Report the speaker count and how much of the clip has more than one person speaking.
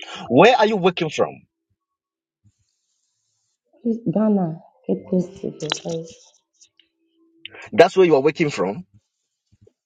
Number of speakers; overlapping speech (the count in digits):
2, no overlap